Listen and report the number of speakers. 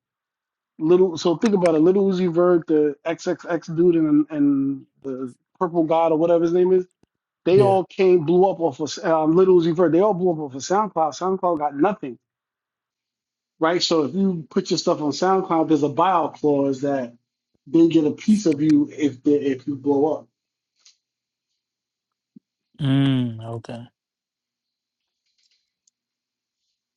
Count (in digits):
2